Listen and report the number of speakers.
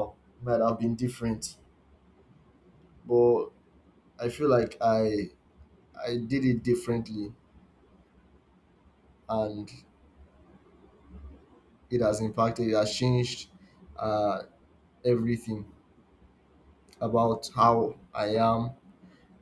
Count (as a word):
one